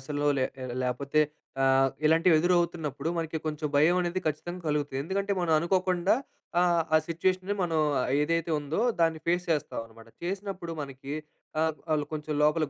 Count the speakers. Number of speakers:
one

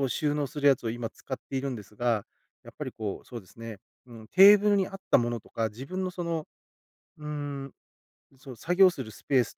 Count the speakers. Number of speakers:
one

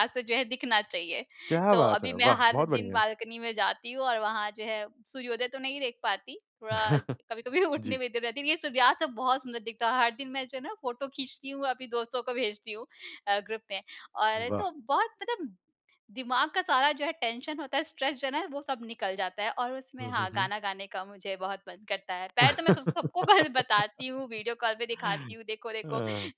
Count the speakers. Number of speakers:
two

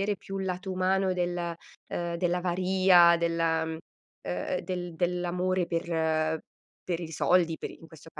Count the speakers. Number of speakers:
one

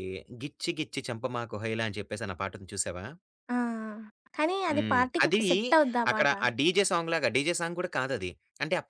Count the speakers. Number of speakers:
two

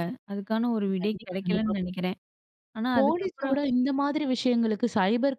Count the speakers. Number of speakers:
two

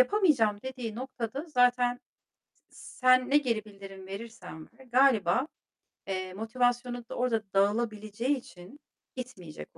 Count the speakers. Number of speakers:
one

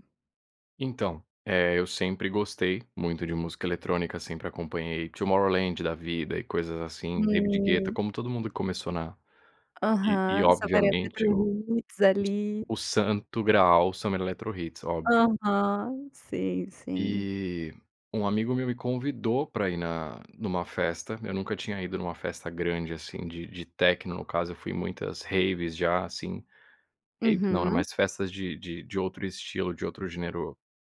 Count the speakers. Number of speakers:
two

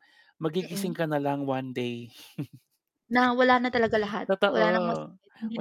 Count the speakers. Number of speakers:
two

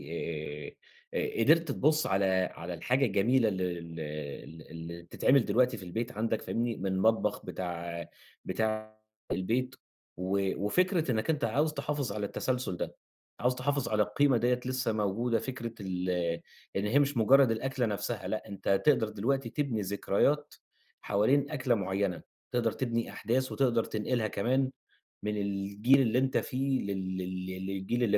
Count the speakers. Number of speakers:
one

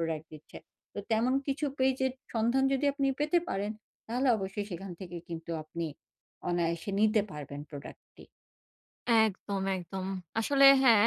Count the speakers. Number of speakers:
two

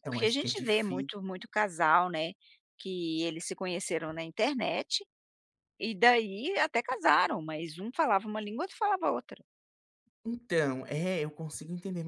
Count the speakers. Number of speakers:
two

